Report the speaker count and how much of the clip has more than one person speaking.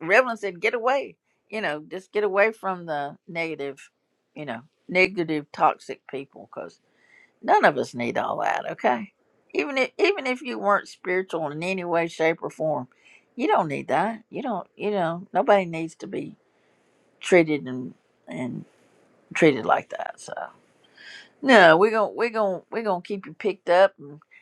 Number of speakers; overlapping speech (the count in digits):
1, no overlap